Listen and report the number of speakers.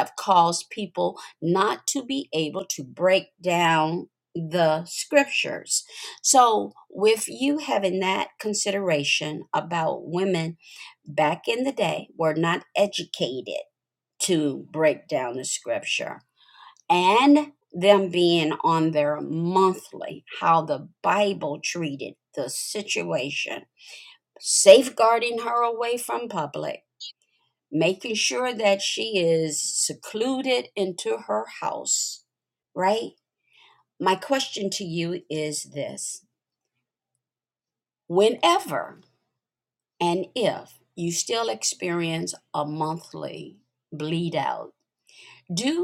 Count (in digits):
1